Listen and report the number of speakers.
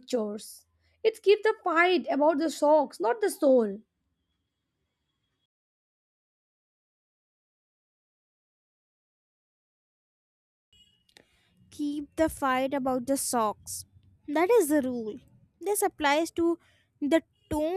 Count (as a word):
two